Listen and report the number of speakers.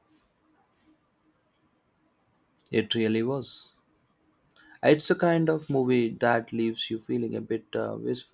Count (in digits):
1